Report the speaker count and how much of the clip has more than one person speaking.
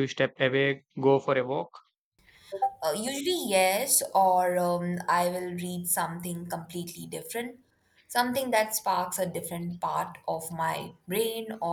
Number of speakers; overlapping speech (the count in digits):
2, no overlap